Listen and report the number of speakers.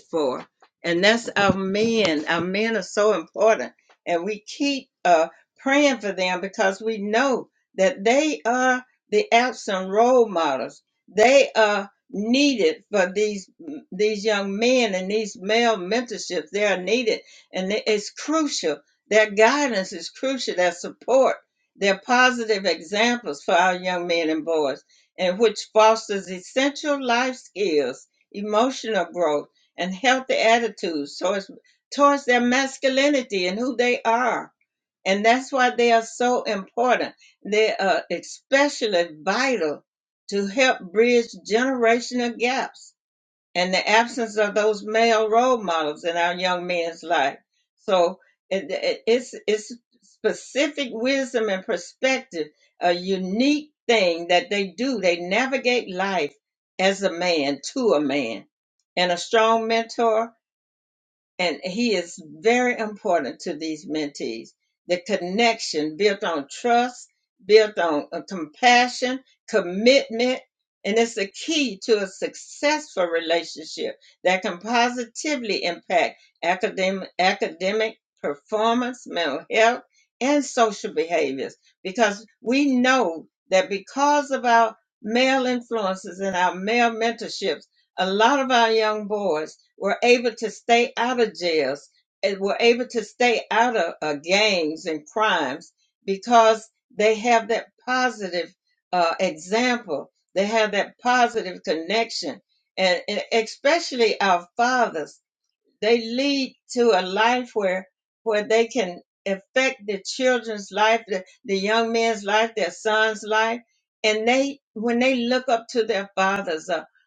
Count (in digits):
1